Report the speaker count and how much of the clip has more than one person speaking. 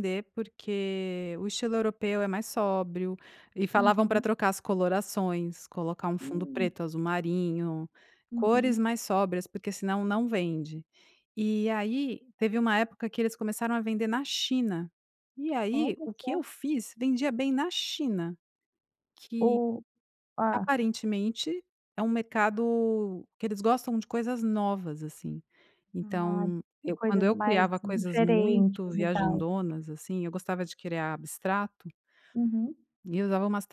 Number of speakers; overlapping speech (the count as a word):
two, about 16%